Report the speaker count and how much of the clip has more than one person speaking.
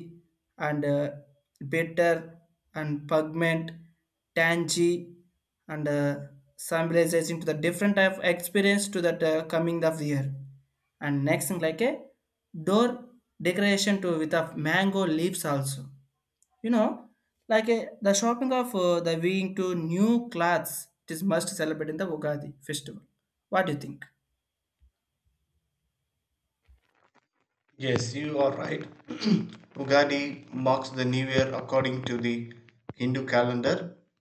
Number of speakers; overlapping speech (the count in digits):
2, no overlap